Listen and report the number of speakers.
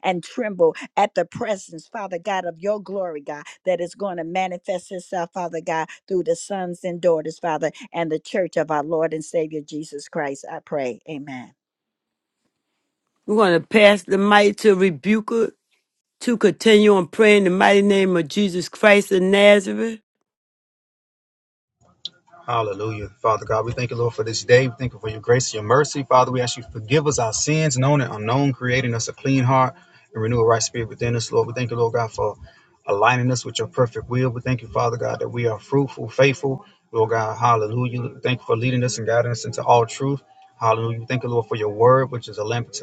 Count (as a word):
three